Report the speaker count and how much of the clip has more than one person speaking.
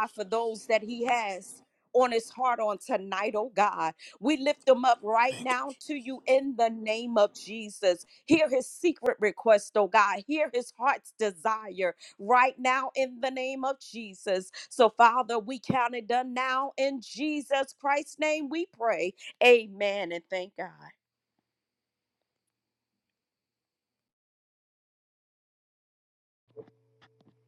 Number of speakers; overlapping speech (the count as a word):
one, no overlap